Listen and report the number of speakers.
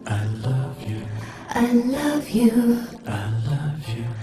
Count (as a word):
zero